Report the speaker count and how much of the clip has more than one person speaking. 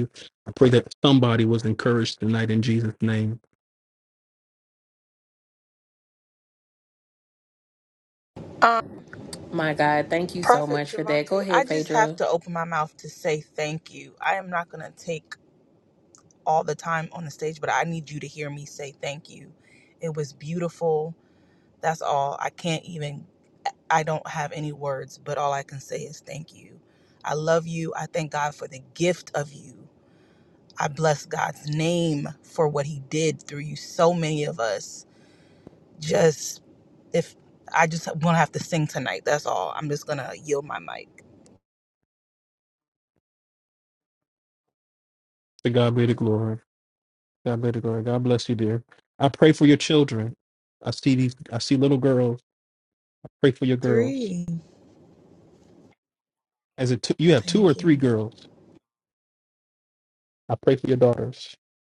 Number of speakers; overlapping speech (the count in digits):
3, about 5%